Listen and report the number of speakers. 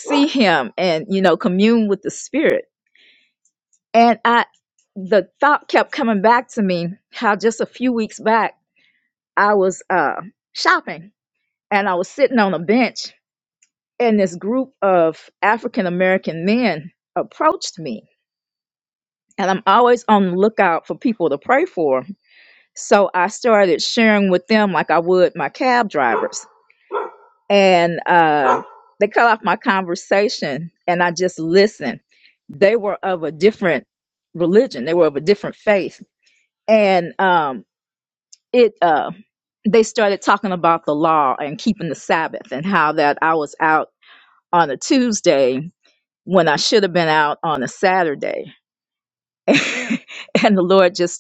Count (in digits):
1